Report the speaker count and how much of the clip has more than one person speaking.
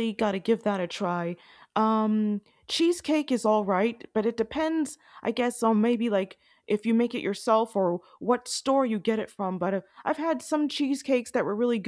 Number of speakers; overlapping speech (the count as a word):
one, no overlap